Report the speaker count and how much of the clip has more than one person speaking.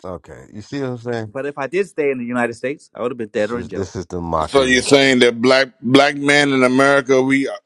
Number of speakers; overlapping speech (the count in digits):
3, about 11%